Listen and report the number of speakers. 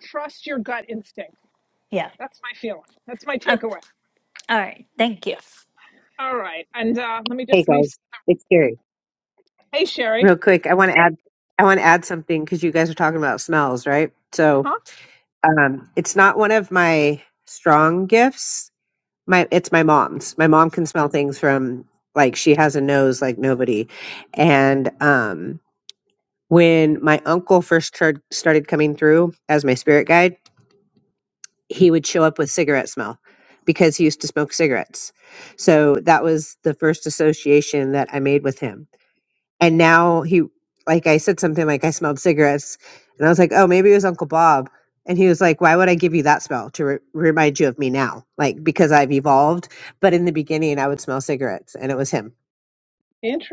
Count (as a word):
three